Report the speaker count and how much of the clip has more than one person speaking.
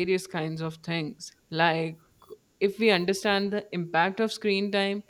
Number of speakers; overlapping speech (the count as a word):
one, no overlap